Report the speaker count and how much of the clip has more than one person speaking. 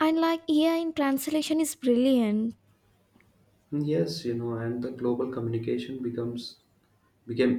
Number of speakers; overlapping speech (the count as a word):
two, no overlap